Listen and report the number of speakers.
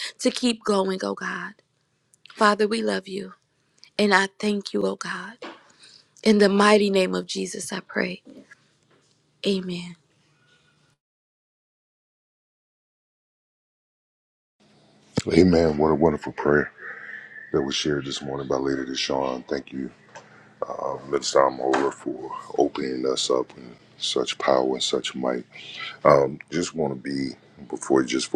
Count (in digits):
2